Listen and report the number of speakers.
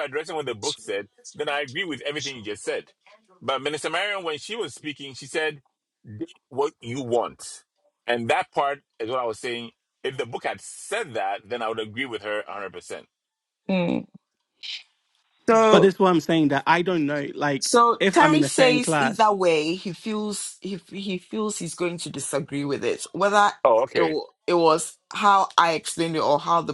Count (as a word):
three